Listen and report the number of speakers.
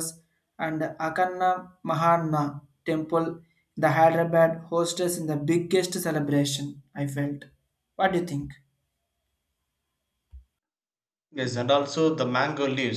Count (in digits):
2